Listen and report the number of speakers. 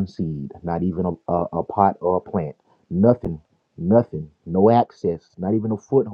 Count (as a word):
one